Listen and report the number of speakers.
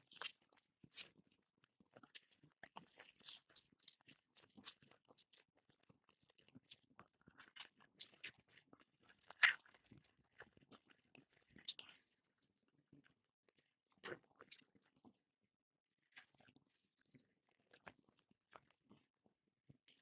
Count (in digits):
0